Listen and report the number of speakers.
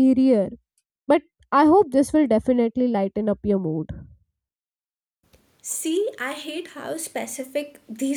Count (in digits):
2